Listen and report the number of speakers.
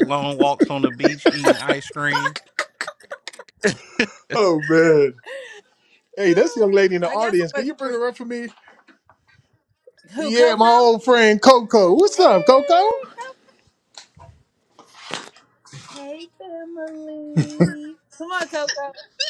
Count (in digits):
3